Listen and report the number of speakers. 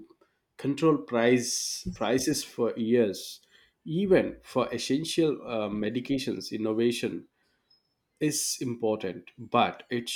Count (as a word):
one